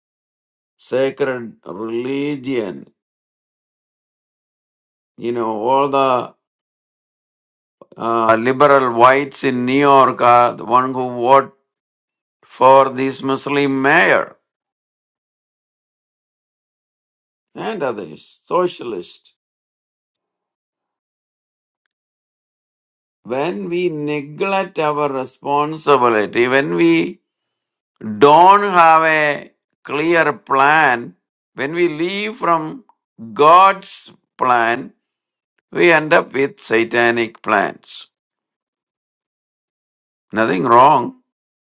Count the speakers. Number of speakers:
one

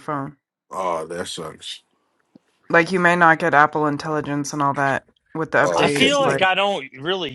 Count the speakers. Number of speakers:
three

